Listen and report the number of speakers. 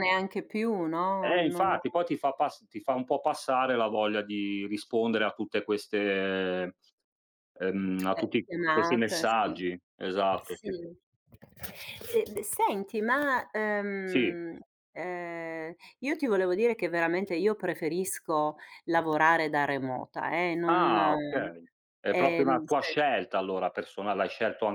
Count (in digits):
2